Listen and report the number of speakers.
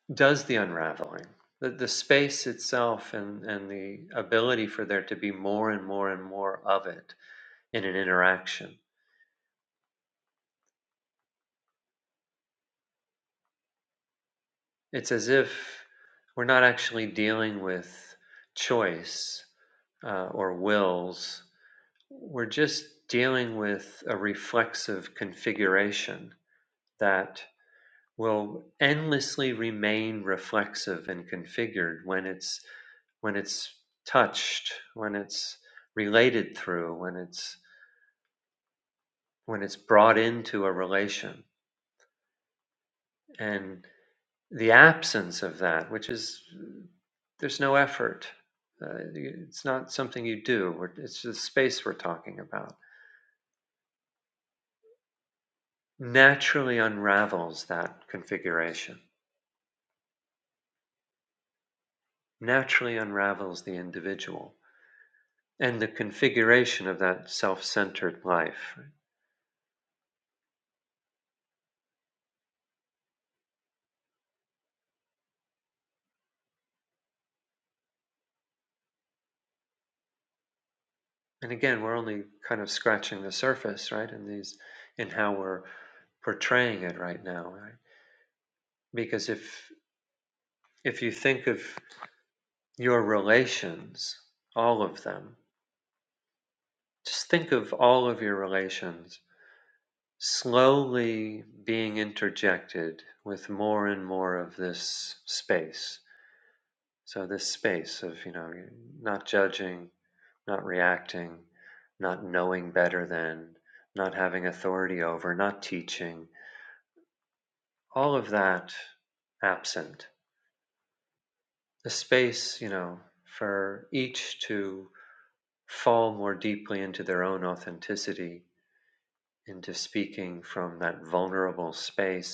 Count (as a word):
one